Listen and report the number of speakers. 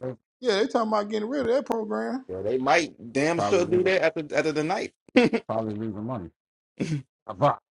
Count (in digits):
3